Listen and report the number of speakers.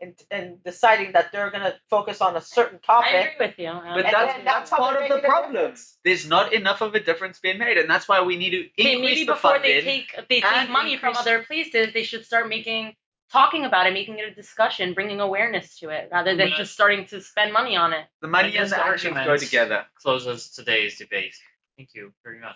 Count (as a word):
four